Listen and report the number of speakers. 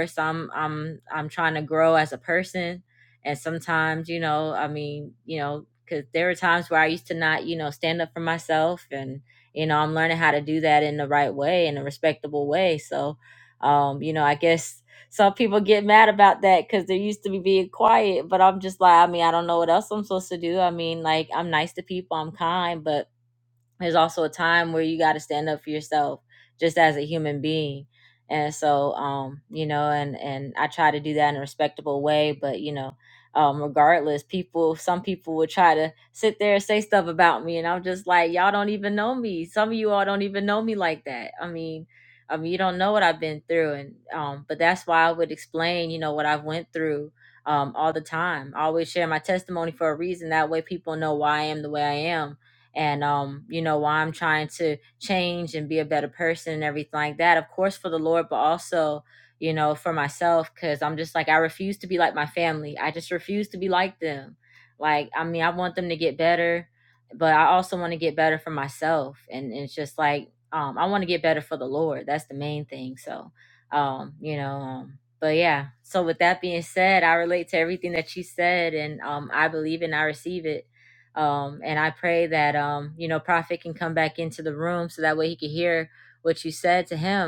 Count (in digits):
1